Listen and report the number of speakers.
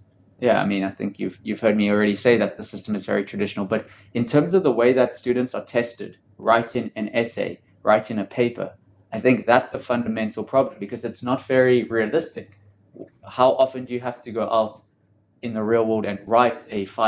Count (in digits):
1